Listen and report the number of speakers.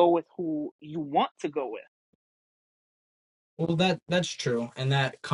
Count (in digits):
2